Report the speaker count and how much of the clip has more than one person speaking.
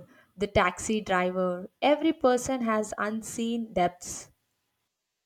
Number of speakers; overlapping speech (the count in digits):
1, no overlap